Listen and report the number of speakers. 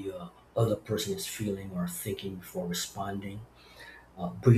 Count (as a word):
one